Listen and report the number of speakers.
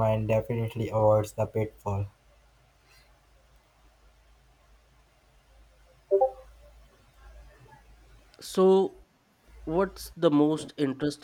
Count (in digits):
2